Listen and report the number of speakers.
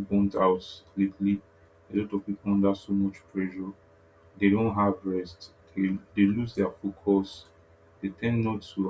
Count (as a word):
one